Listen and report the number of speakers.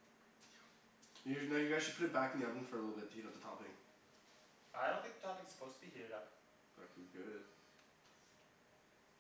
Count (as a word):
two